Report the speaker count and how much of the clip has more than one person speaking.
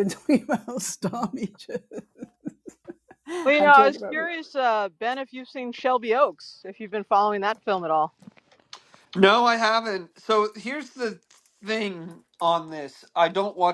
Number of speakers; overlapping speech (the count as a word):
three, about 5%